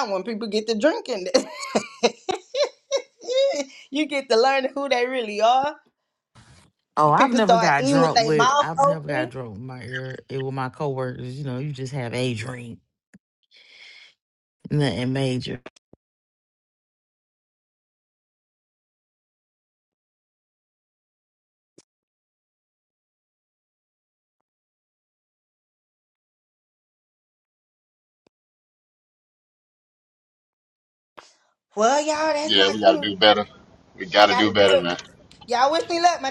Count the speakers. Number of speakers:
three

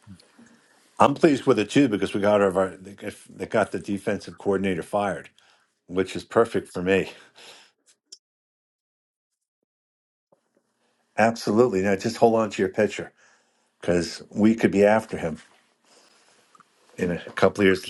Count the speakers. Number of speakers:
one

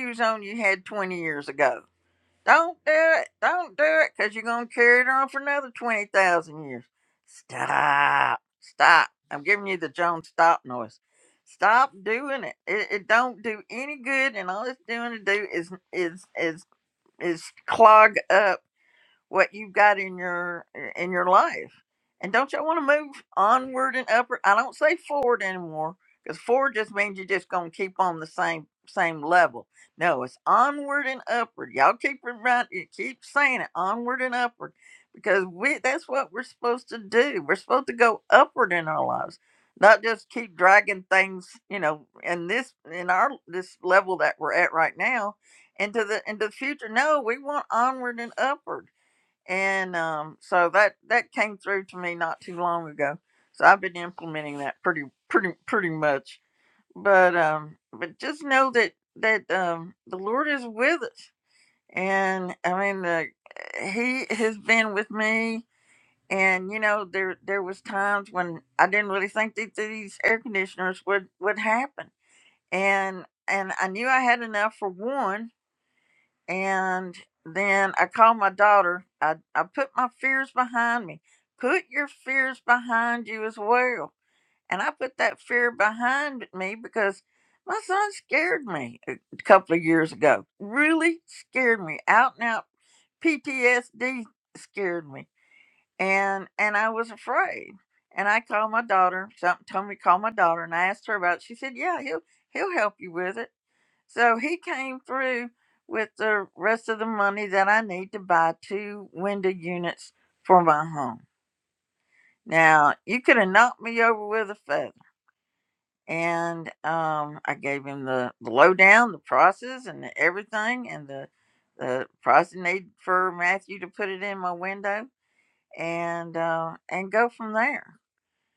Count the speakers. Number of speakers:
one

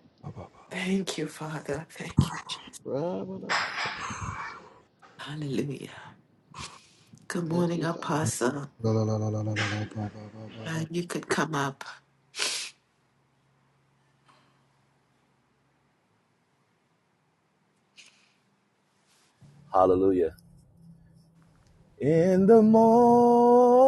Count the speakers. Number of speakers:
four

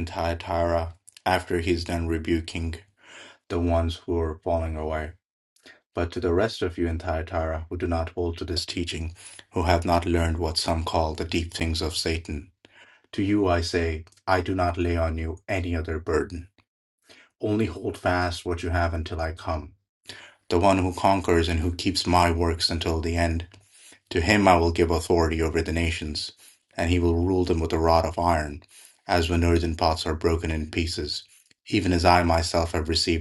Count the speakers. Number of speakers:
one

